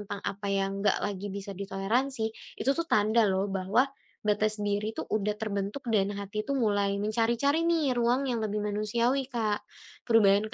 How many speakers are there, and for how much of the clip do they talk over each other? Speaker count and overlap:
1, no overlap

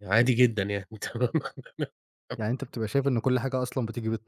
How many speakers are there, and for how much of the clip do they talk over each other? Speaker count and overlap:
2, no overlap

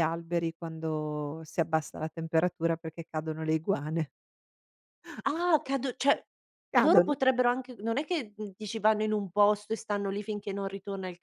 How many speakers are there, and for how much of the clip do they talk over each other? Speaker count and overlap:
2, about 3%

